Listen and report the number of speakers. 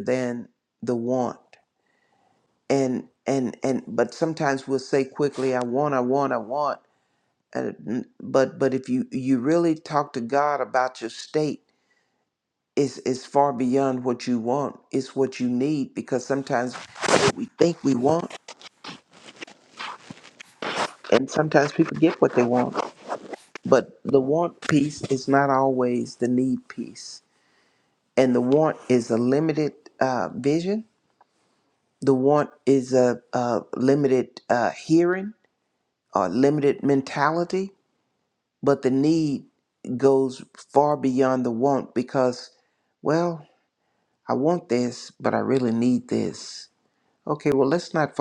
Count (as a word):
one